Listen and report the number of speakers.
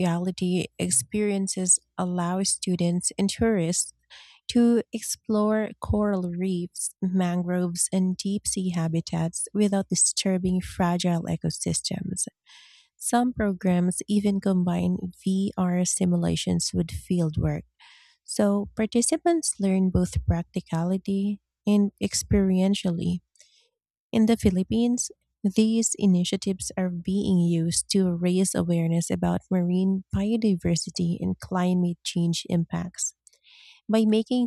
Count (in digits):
1